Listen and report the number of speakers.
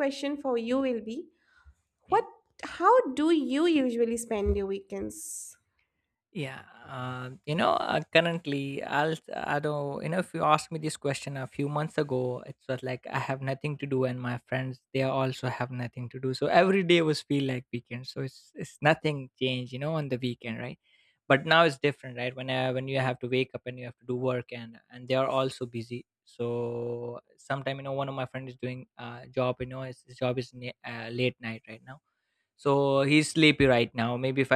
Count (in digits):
2